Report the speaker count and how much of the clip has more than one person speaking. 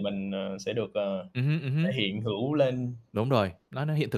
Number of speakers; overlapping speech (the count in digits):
2, about 2%